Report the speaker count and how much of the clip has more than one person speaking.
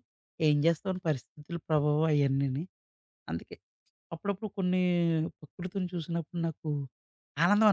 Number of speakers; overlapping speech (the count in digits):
1, no overlap